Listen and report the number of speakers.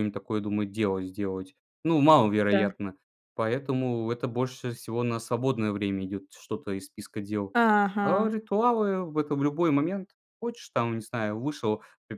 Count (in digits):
2